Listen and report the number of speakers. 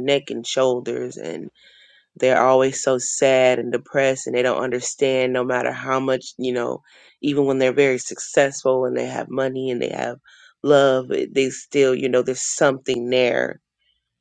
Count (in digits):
1